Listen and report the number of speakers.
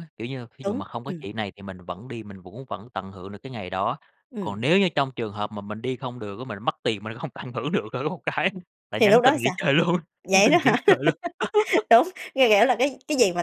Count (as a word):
two